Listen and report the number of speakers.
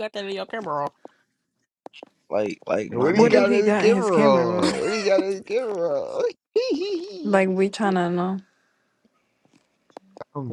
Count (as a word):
four